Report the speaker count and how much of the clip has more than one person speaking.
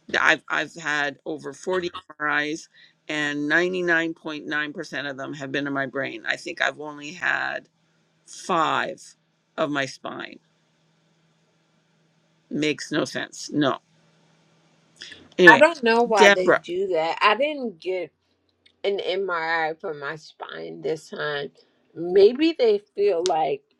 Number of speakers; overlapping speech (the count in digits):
2, about 3%